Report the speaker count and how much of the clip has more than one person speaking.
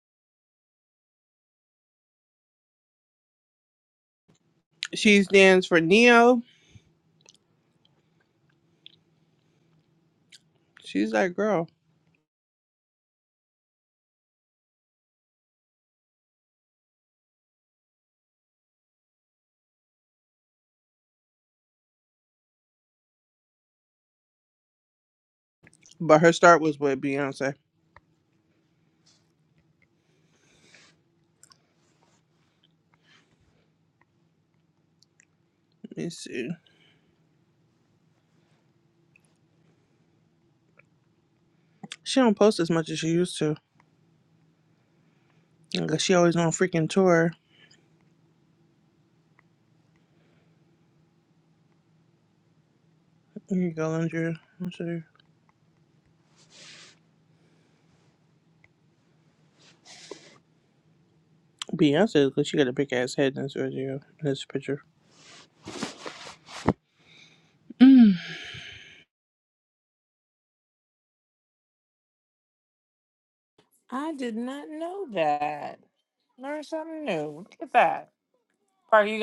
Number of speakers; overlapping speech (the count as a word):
two, no overlap